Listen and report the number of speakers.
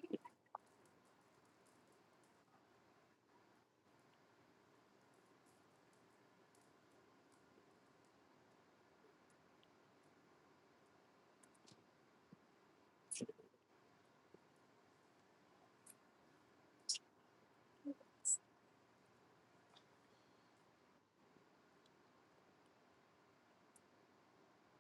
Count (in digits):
0